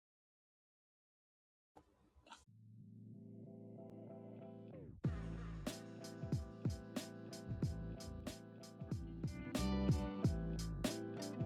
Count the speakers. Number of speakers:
0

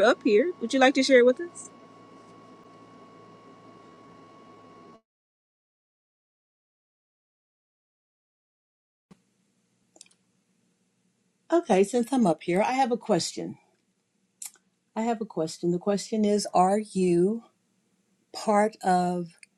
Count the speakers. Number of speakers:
2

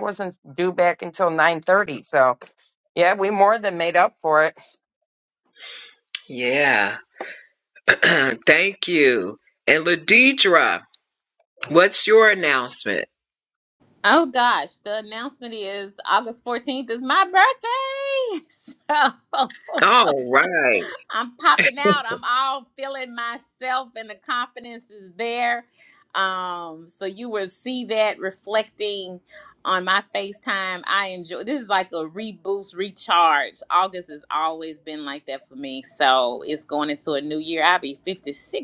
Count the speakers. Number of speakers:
3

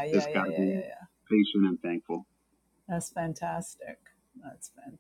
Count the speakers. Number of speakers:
2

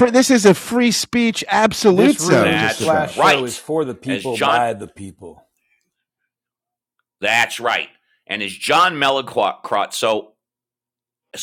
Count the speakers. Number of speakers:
3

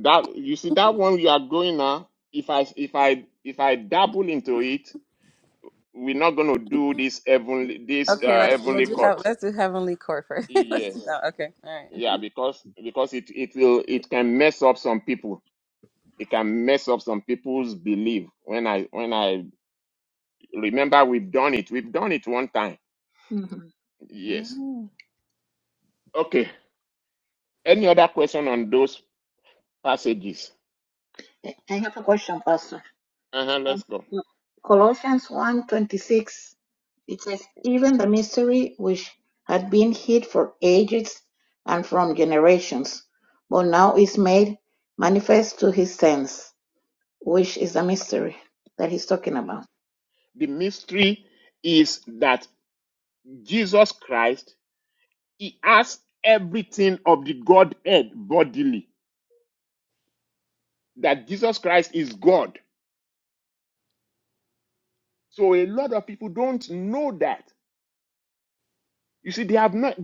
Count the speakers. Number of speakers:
3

